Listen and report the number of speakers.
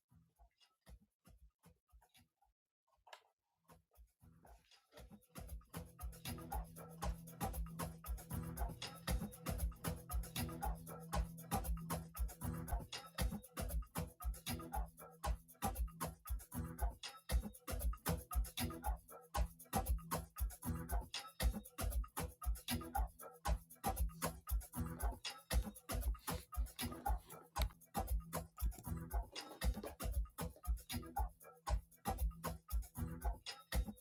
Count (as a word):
zero